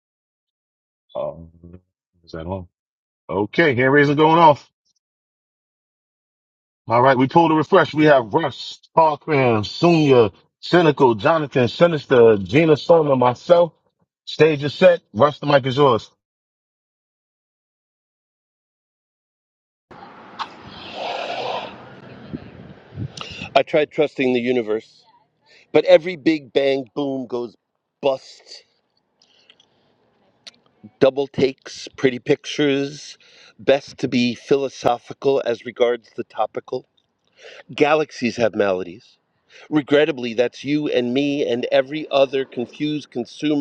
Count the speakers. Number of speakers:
2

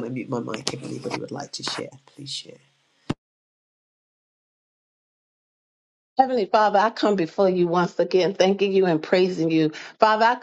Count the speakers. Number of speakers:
2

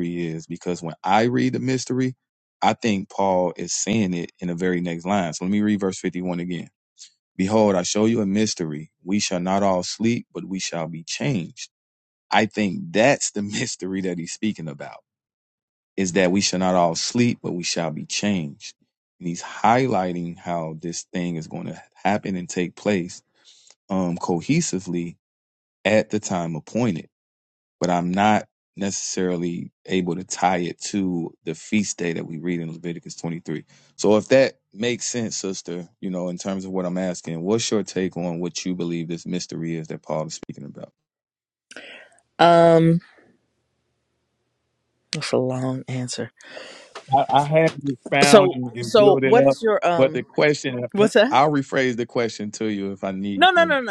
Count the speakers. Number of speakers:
2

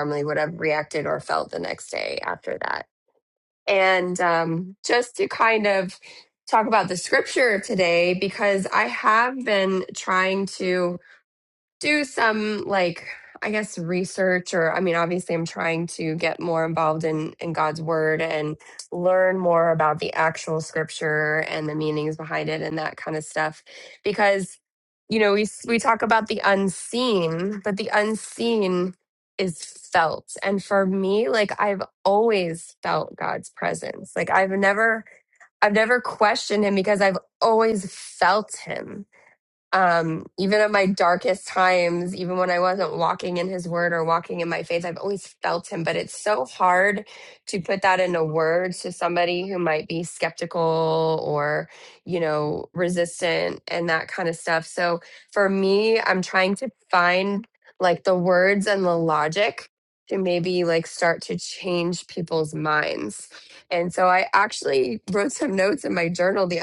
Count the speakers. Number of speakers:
1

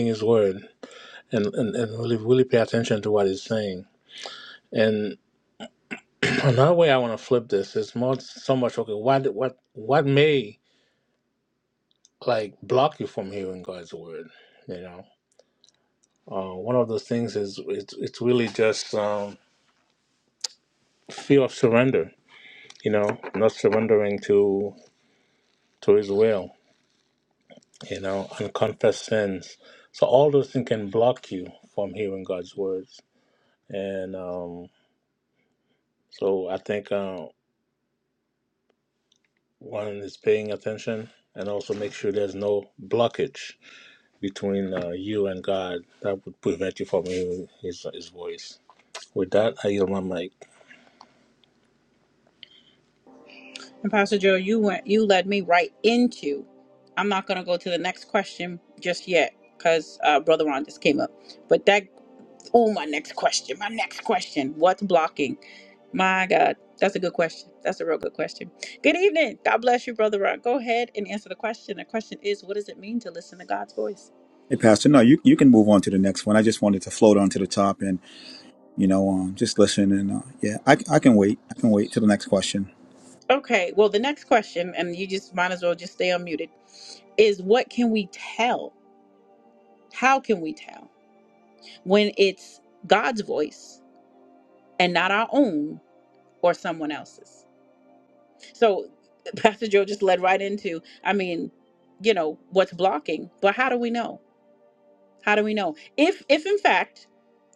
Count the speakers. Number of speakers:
3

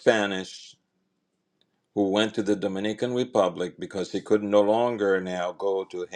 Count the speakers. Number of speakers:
1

